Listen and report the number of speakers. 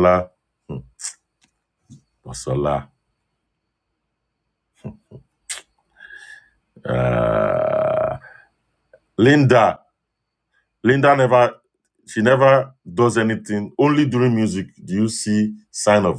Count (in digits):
1